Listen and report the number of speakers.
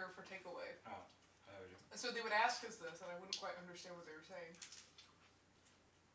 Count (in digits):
2